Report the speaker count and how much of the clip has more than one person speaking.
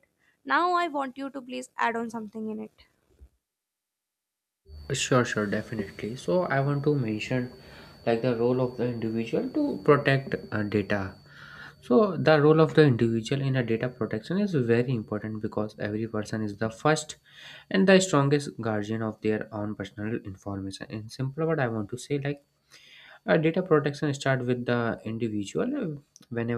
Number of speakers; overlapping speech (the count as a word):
two, no overlap